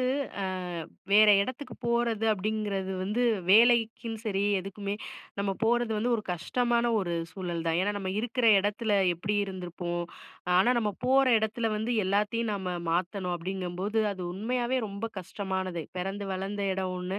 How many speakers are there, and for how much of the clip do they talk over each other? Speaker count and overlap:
one, no overlap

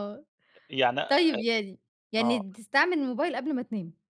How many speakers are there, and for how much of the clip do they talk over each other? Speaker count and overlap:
two, about 13%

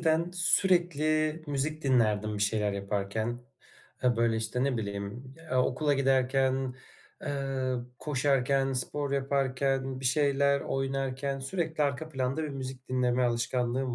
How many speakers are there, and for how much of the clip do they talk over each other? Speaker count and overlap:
one, no overlap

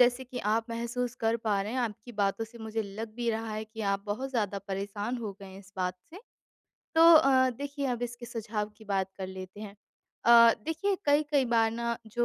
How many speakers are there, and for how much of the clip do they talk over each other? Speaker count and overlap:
one, no overlap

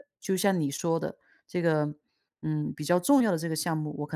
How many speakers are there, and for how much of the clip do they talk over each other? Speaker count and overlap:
one, no overlap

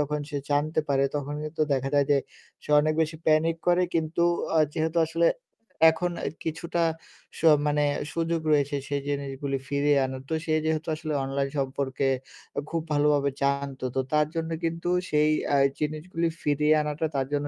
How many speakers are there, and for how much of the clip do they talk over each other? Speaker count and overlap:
one, no overlap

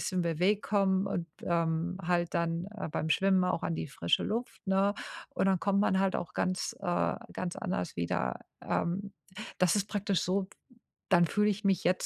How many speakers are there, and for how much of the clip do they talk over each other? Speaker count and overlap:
one, no overlap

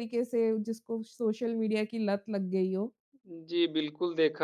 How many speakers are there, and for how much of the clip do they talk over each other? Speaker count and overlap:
two, no overlap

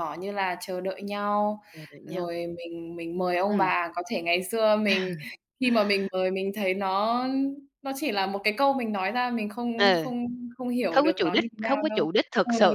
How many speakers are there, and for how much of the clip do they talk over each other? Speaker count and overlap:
two, about 19%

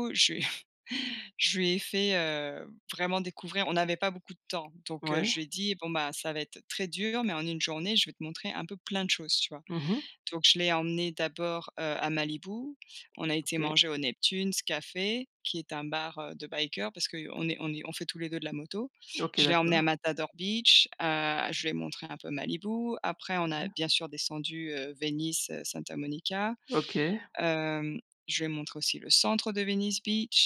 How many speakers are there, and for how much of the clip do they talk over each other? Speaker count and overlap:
two, about 4%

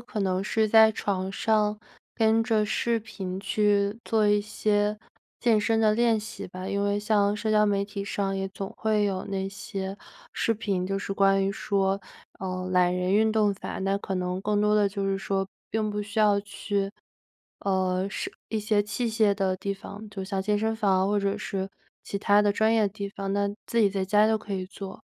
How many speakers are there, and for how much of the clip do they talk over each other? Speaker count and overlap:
one, no overlap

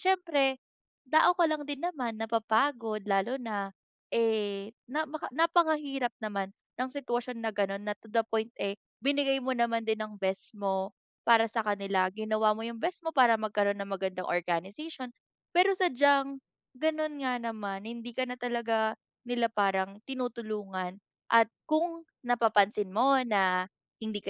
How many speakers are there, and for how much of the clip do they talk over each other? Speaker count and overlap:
one, no overlap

